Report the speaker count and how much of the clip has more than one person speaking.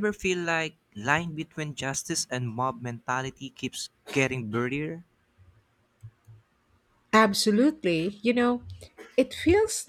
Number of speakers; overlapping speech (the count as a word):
two, no overlap